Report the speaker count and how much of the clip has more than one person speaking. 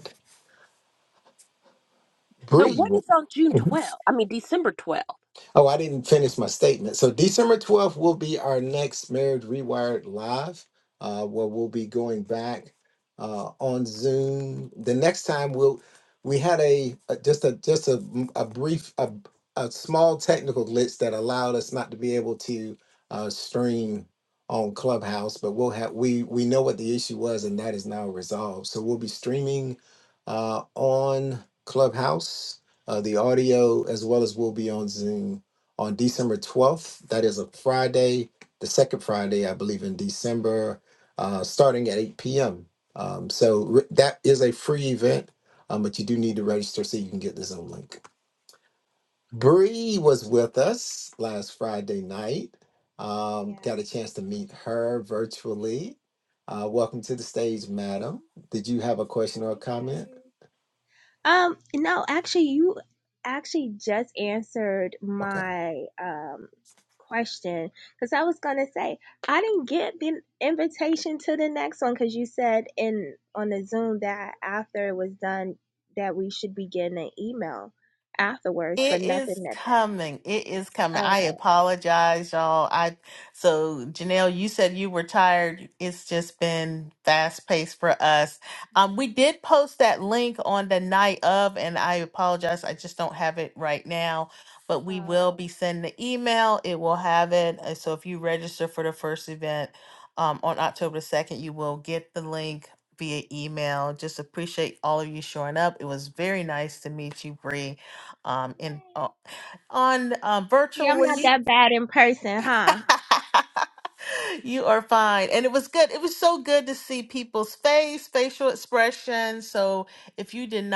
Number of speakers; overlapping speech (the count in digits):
4, about 3%